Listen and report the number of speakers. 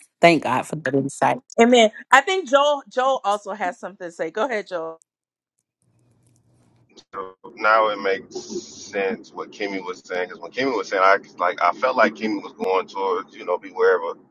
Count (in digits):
3